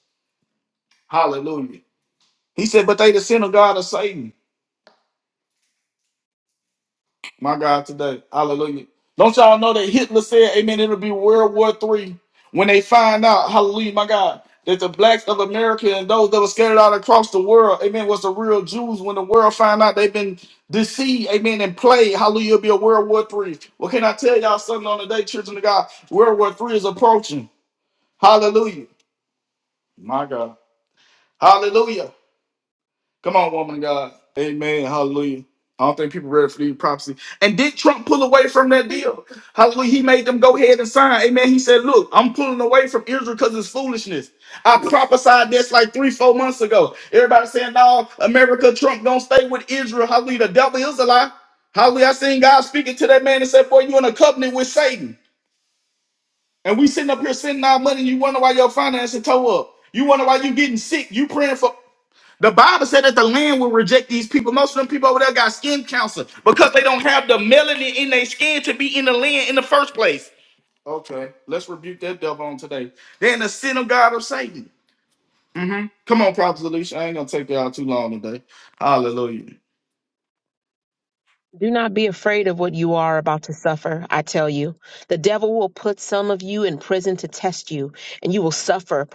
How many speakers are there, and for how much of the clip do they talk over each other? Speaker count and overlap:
2, no overlap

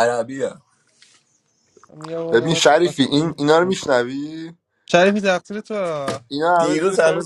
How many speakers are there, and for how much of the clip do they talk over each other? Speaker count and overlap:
3, about 13%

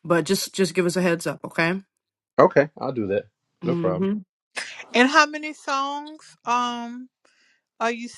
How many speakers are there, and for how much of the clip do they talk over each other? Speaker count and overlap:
3, about 5%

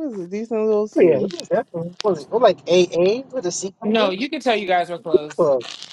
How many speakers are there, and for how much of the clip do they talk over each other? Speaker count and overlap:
3, about 15%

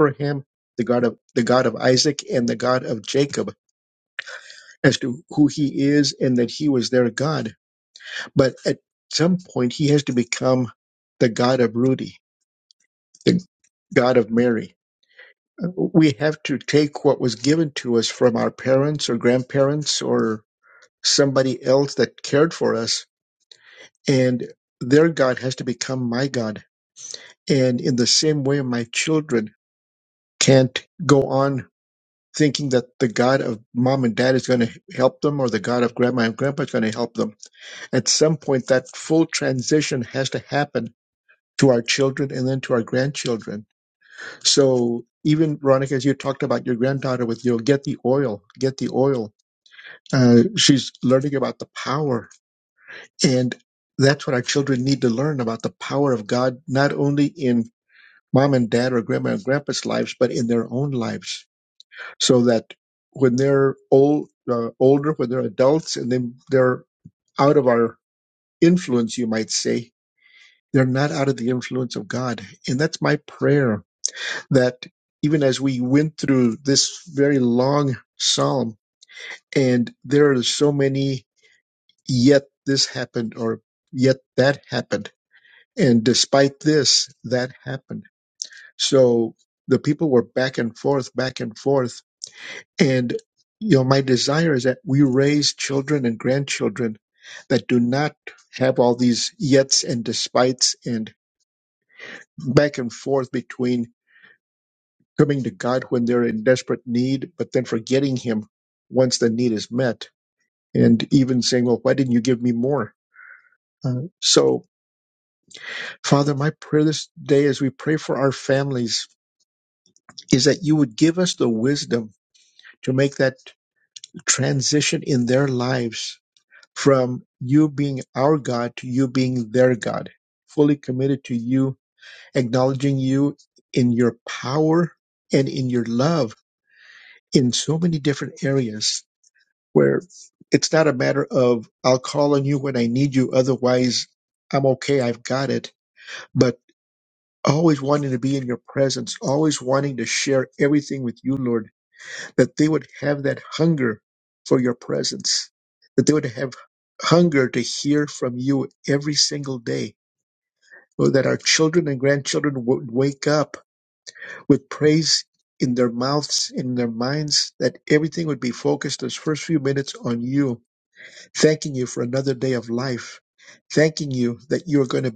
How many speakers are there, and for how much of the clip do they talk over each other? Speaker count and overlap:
1, no overlap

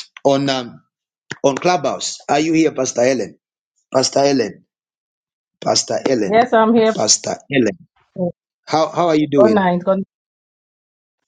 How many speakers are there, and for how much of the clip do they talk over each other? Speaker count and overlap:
2, about 3%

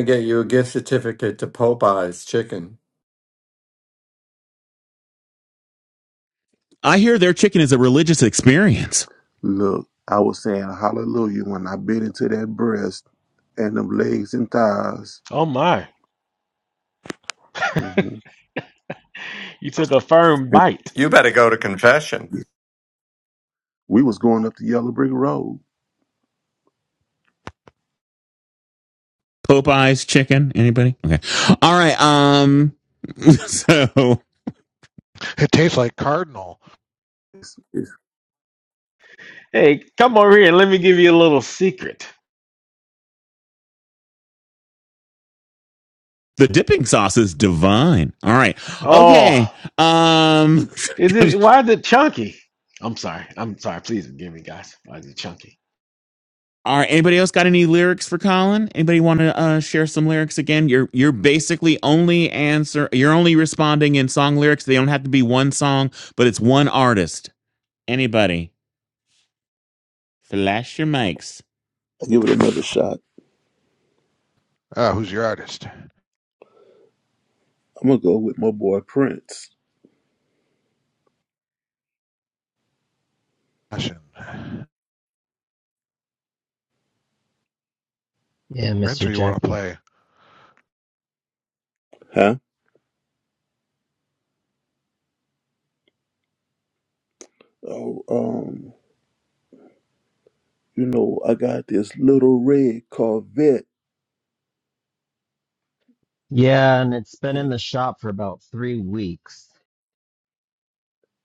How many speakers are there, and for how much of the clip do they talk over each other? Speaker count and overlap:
6, about 2%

